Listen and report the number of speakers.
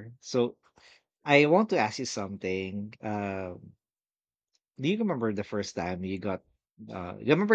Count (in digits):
1